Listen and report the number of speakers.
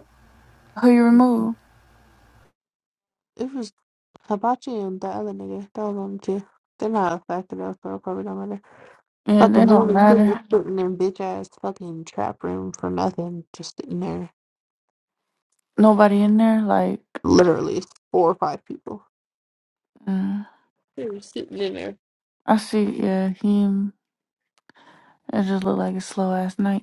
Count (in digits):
2